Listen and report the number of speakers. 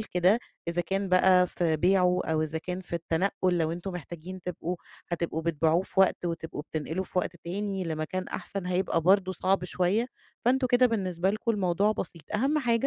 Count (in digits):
1